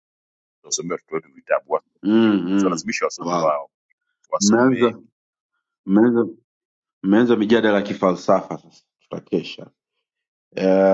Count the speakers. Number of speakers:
2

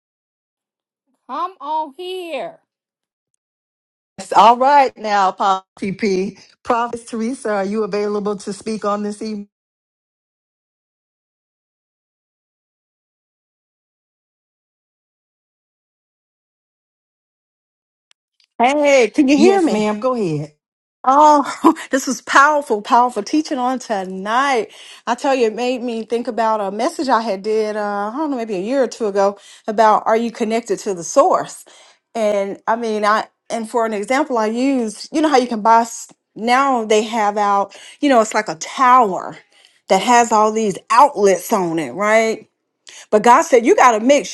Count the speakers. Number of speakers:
3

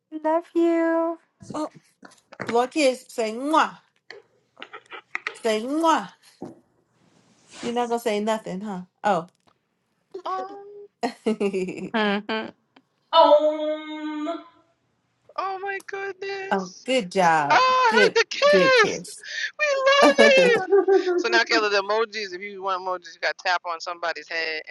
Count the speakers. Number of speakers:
4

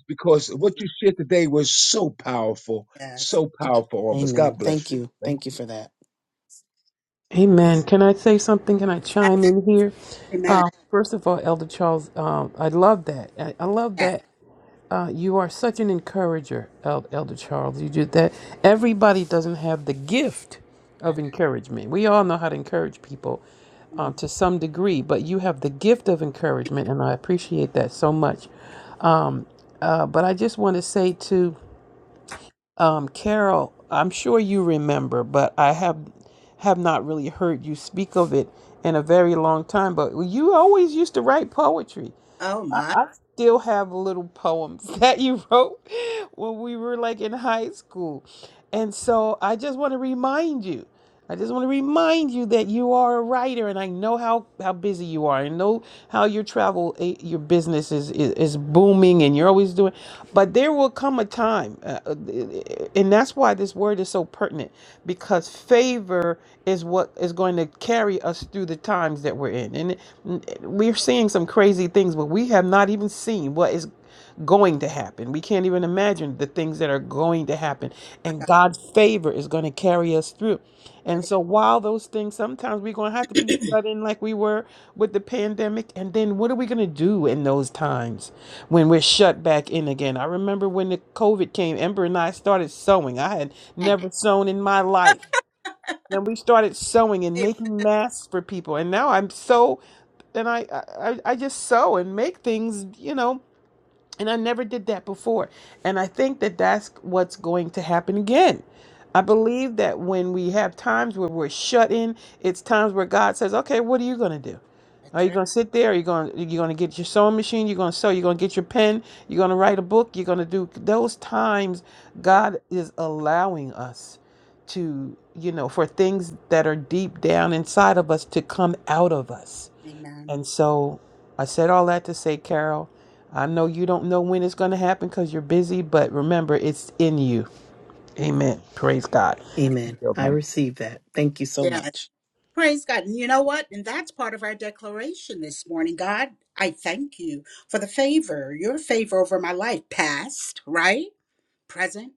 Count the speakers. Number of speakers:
4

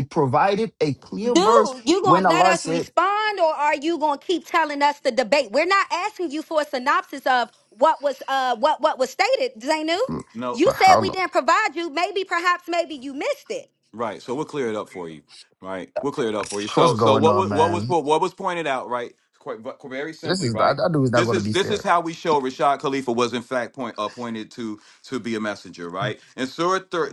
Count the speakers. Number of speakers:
3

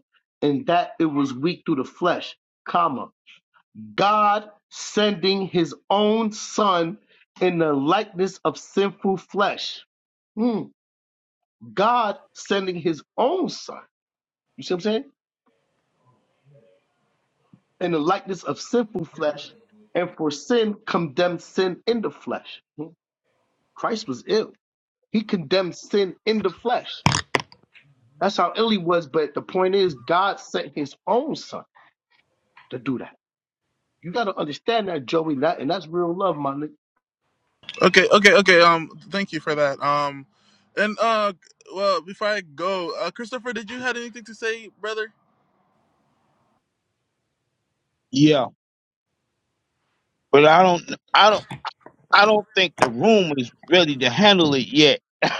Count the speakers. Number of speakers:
3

